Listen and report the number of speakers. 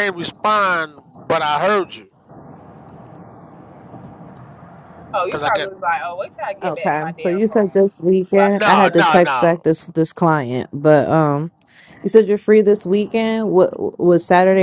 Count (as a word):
three